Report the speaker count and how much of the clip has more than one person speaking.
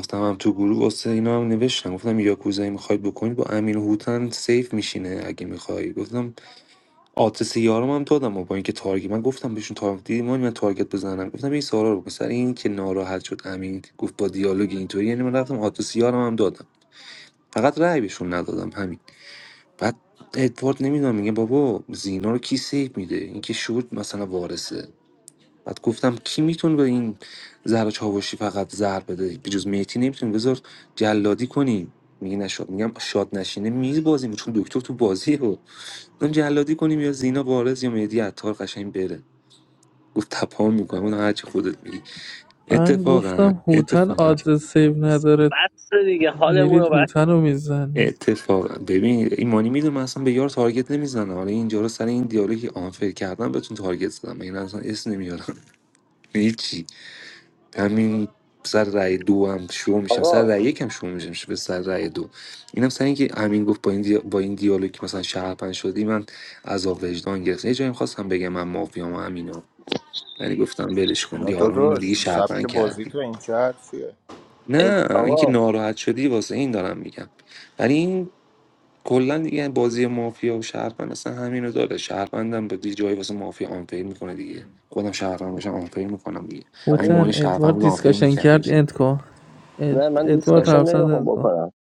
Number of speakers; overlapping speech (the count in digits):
4, about 10%